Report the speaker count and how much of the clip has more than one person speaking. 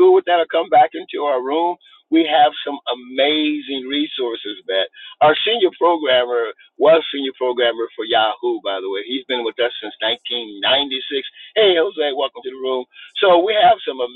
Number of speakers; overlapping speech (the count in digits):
1, no overlap